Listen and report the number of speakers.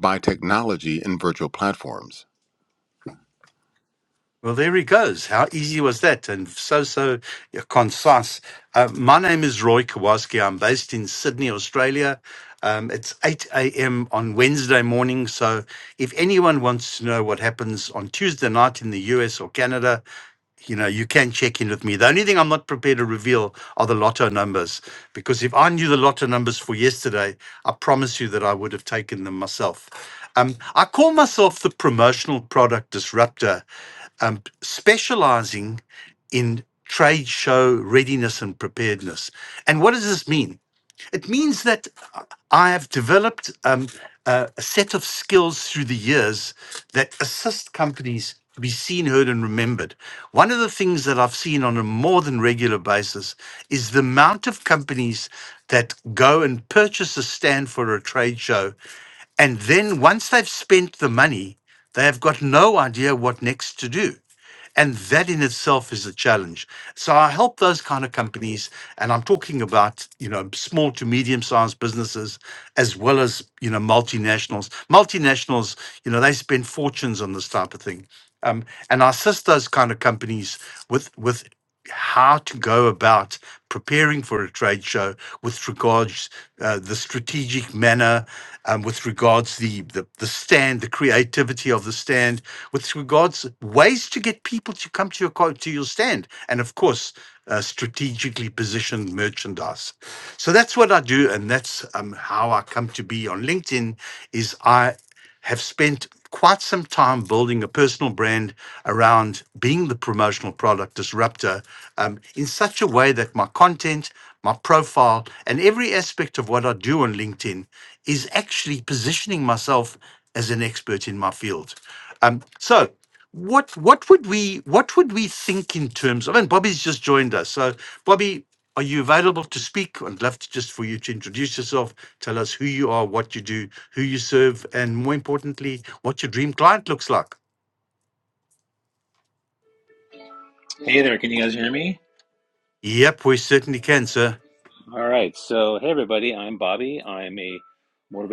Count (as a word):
three